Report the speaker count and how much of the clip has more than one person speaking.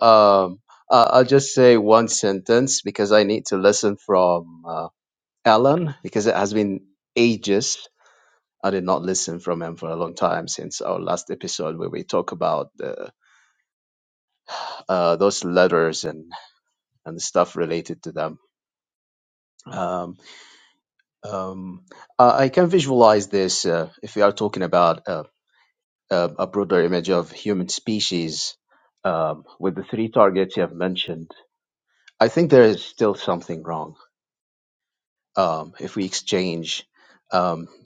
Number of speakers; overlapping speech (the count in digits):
1, no overlap